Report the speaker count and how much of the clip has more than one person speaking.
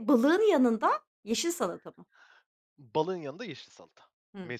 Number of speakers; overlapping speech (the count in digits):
2, about 1%